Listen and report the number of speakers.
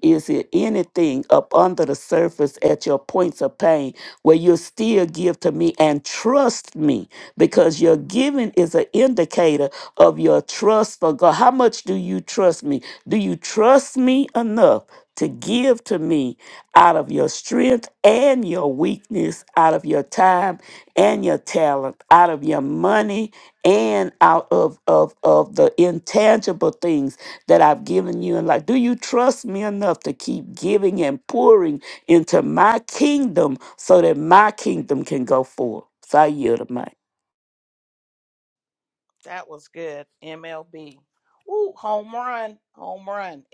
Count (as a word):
two